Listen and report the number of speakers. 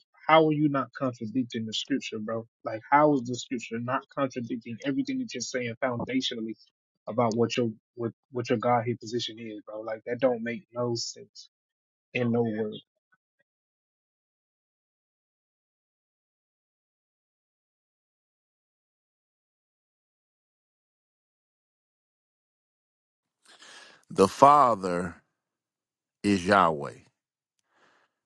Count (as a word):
two